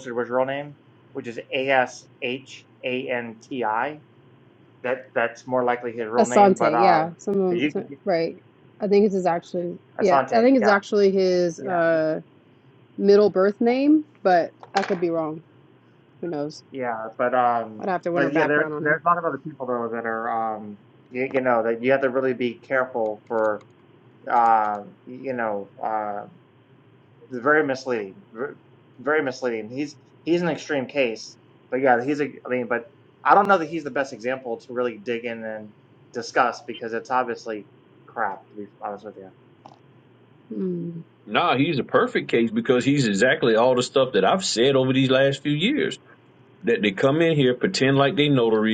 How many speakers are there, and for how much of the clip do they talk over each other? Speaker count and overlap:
three, about 7%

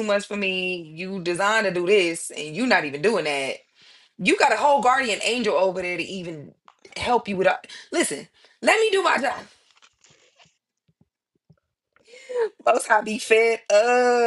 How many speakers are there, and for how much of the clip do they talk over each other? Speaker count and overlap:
one, no overlap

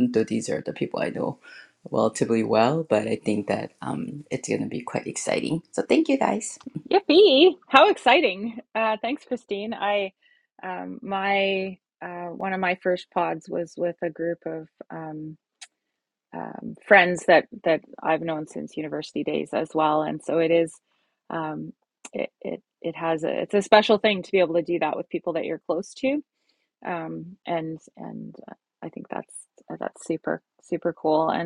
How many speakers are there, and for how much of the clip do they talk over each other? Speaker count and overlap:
two, no overlap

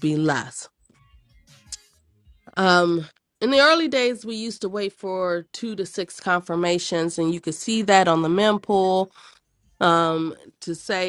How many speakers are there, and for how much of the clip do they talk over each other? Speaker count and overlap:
one, no overlap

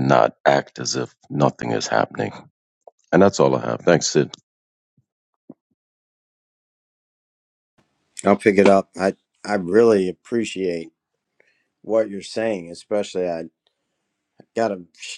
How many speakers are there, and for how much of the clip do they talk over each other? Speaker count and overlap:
two, no overlap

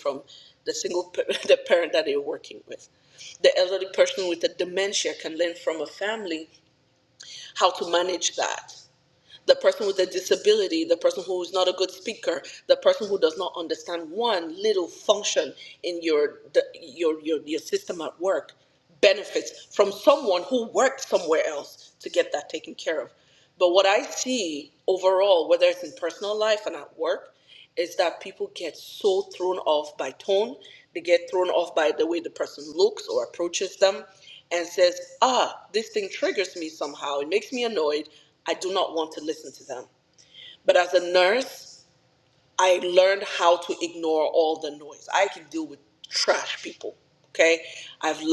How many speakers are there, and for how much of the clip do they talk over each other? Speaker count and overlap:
one, no overlap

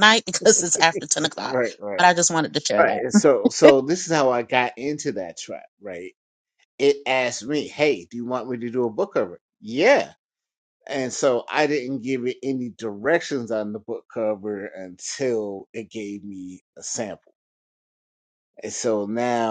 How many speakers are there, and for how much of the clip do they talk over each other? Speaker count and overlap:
two, about 1%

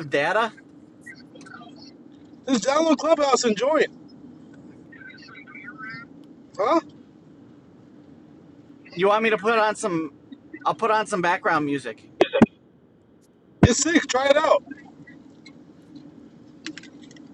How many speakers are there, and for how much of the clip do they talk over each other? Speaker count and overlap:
two, no overlap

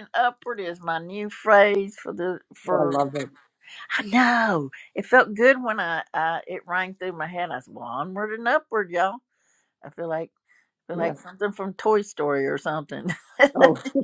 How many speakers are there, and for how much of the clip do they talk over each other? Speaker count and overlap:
two, about 4%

